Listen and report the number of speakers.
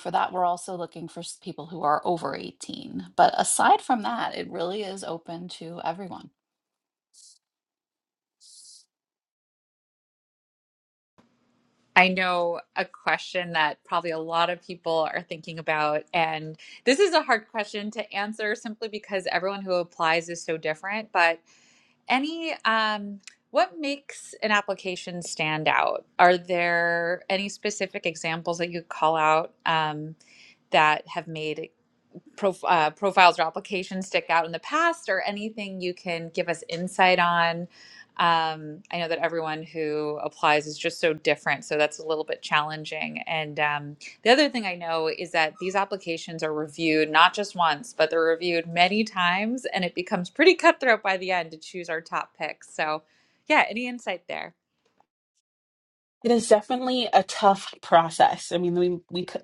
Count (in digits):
3